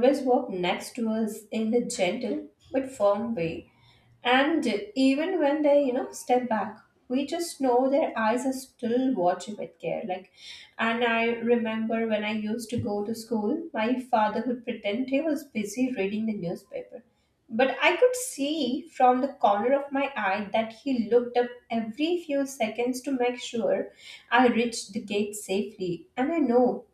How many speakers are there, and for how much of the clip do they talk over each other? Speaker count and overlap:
one, no overlap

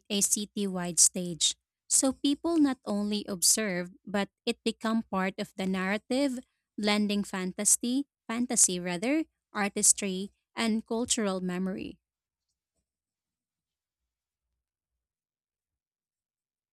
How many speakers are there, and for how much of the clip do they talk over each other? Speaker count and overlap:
one, no overlap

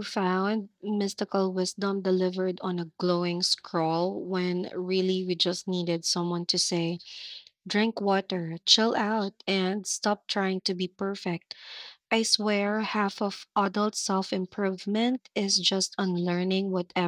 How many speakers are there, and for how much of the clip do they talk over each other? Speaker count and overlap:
one, no overlap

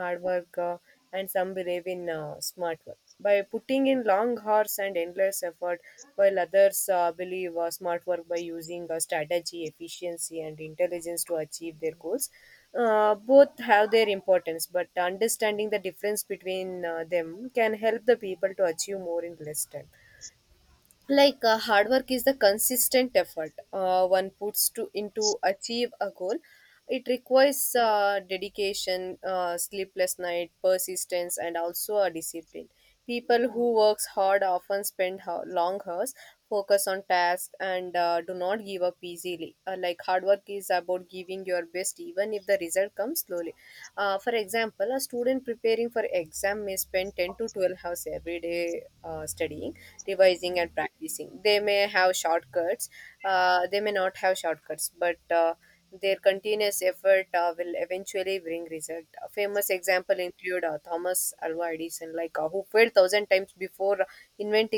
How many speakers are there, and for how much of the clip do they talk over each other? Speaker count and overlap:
one, no overlap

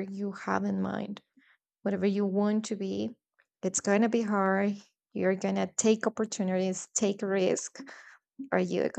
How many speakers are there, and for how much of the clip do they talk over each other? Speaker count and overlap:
one, no overlap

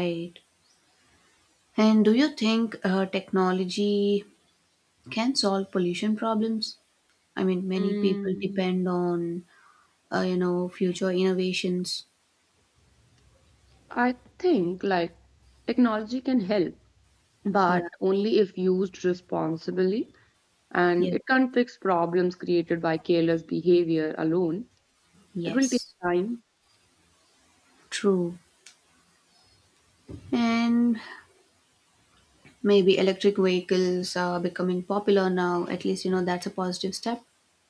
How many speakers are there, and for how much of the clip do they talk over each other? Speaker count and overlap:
two, about 4%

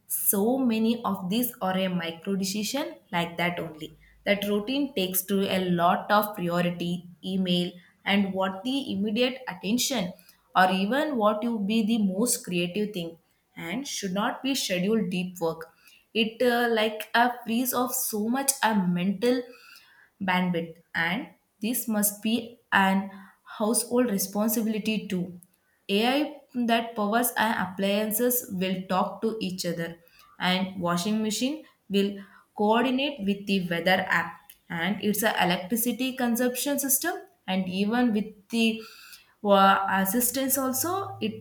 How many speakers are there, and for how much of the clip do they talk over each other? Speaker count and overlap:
one, no overlap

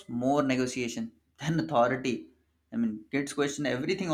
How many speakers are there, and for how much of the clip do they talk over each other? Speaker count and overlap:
one, no overlap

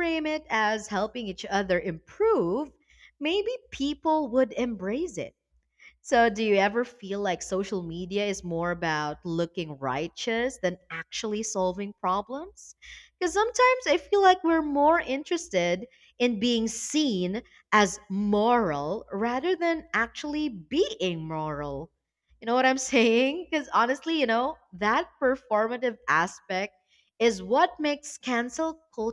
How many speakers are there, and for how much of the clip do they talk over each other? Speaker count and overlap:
one, no overlap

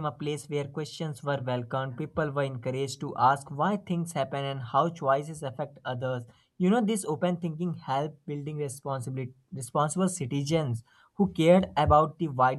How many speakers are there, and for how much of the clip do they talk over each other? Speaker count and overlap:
one, no overlap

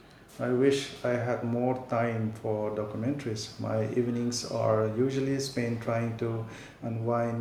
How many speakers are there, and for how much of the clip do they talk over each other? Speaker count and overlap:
one, no overlap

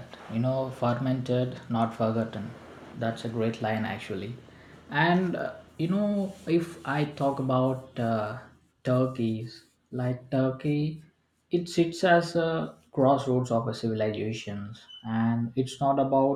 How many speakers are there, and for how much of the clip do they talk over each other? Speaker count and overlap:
one, no overlap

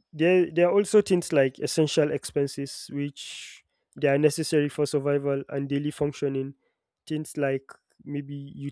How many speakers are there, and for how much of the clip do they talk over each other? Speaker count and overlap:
one, no overlap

